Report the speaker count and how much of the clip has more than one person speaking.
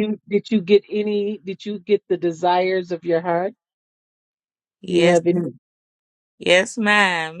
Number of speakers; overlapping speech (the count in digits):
2, about 4%